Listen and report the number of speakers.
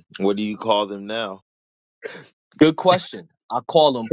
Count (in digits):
2